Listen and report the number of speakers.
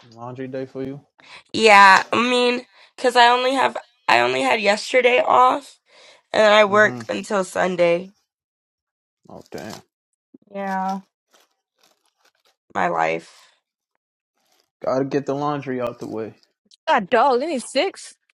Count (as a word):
three